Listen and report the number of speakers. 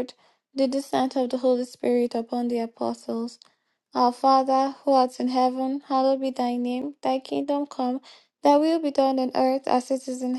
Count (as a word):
one